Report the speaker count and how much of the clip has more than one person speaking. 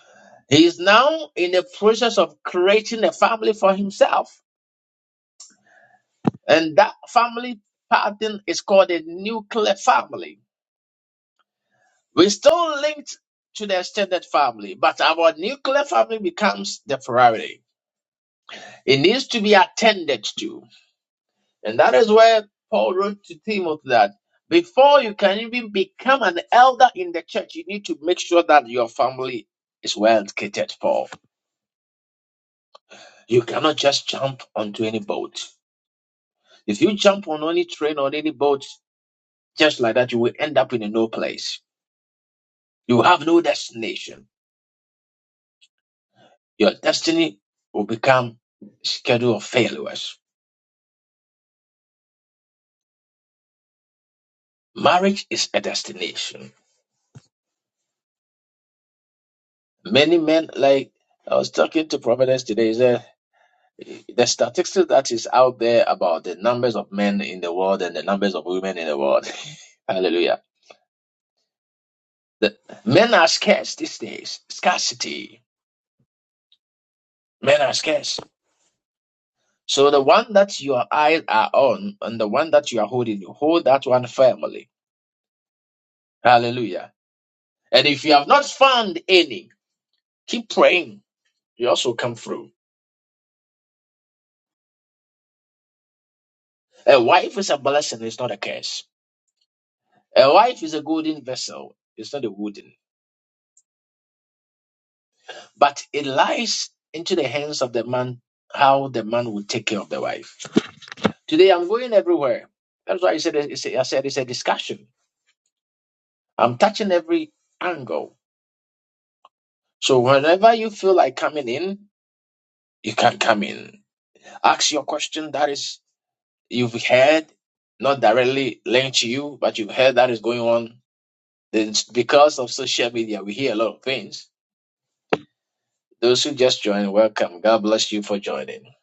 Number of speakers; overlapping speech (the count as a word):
one, no overlap